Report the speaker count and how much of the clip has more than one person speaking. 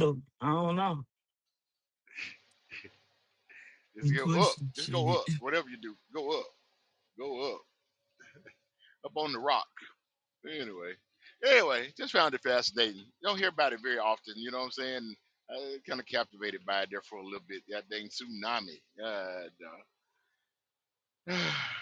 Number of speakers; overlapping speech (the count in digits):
2, about 5%